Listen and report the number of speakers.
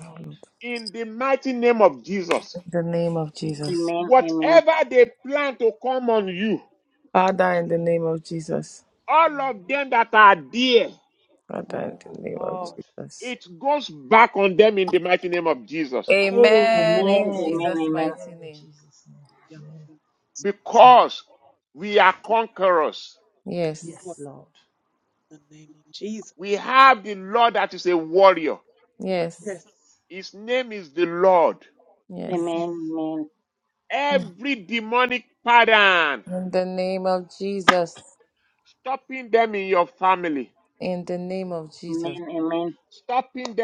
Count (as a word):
five